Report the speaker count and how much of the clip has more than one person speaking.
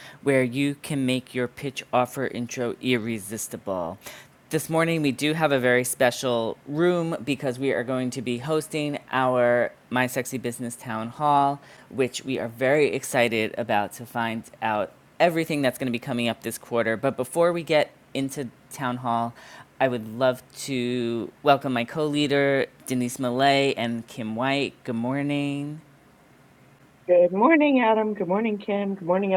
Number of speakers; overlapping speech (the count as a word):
two, no overlap